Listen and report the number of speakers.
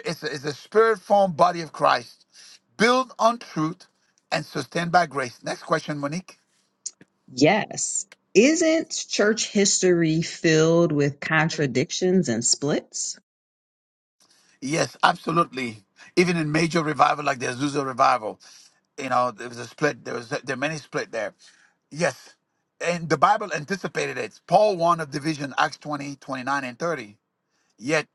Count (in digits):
2